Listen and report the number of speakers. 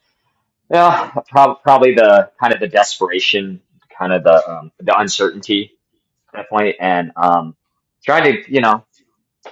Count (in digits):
1